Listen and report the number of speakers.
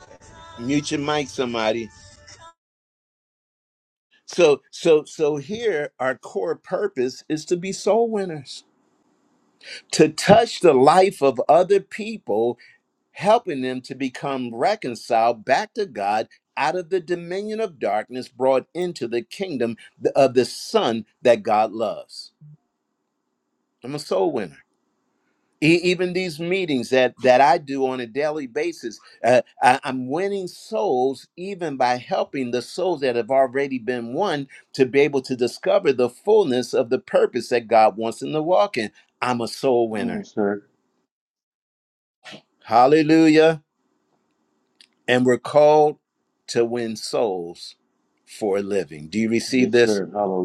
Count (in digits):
2